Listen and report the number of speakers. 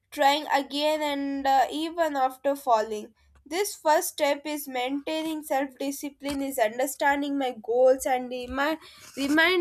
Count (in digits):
1